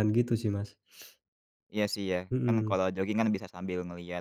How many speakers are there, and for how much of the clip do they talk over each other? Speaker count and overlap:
two, about 10%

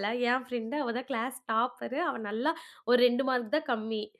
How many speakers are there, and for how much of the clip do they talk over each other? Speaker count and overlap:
one, no overlap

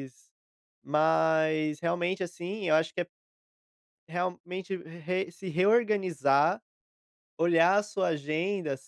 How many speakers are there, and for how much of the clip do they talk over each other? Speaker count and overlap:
one, no overlap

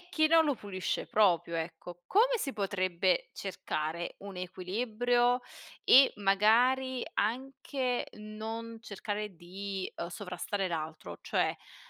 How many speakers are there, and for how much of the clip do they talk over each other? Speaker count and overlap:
one, no overlap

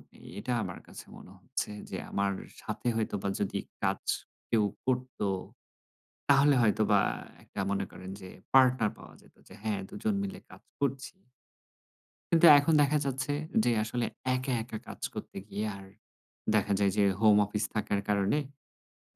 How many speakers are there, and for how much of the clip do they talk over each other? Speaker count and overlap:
one, no overlap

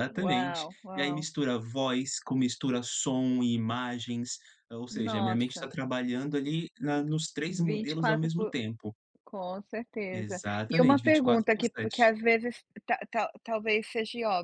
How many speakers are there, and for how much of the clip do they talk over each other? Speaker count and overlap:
two, about 33%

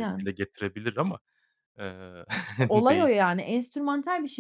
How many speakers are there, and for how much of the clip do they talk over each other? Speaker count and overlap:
two, about 11%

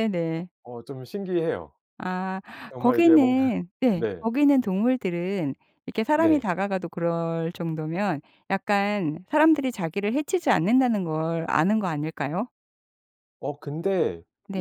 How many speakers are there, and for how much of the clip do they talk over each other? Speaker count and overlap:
two, about 9%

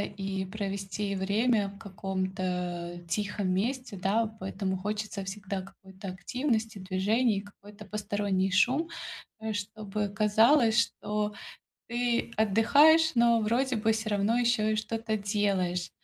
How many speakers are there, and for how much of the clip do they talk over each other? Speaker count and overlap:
one, no overlap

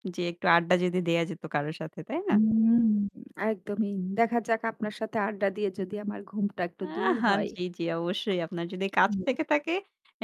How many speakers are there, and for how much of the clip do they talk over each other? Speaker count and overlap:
two, about 4%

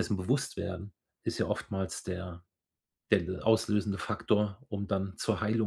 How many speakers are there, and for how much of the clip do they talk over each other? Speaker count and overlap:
one, no overlap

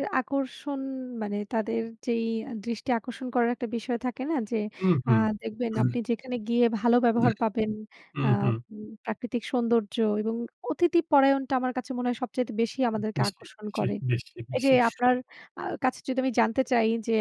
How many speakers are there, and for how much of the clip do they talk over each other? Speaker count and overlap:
two, about 8%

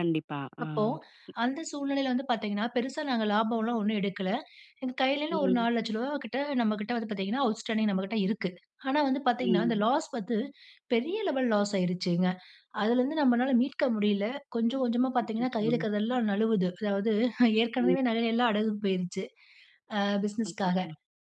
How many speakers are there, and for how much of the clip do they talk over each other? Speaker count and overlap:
two, about 10%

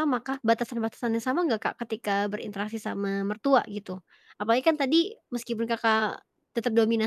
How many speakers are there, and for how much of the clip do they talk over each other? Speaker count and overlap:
one, no overlap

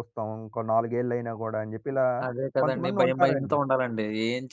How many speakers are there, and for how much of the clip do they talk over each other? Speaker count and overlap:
two, about 22%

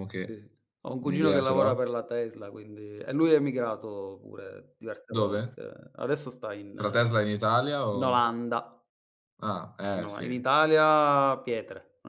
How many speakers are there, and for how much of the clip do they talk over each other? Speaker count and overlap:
two, about 15%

